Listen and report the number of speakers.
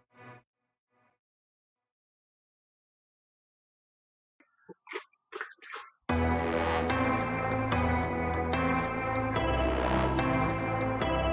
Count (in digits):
0